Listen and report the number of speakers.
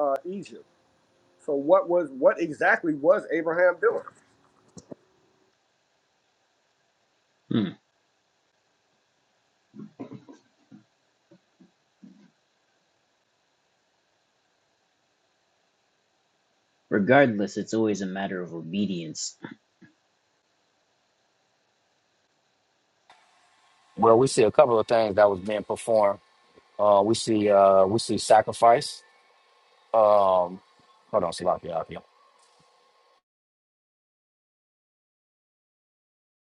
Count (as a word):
three